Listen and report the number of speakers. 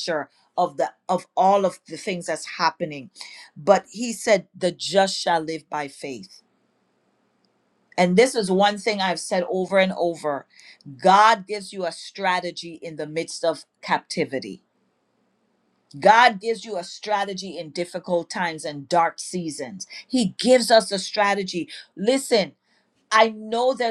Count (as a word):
one